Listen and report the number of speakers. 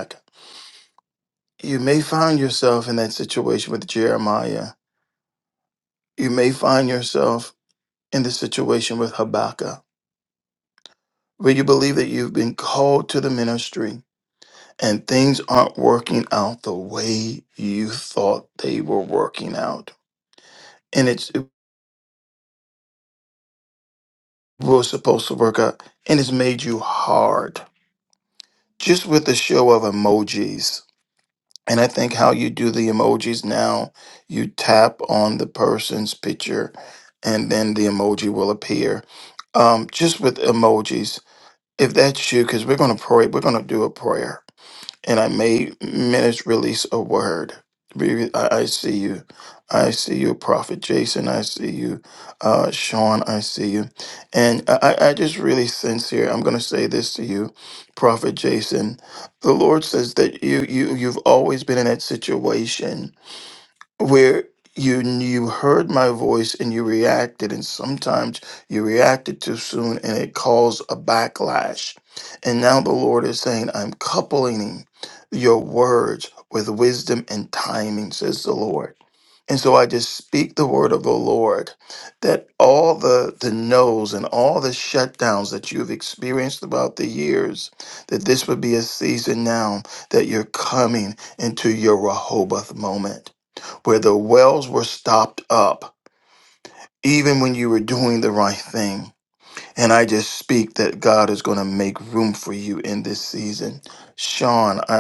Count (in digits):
1